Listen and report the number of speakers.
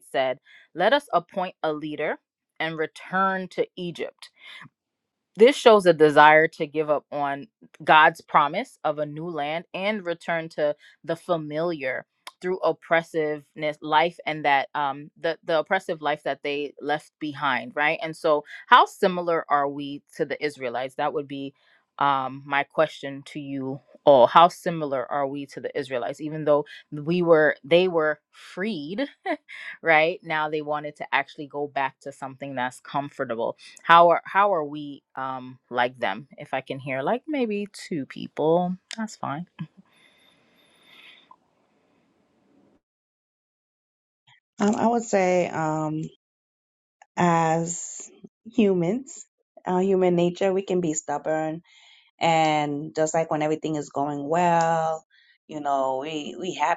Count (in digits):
2